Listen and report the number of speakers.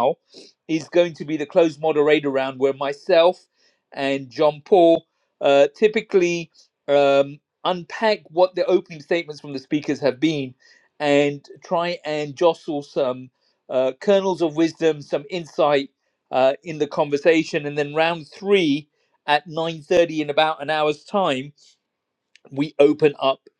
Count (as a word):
one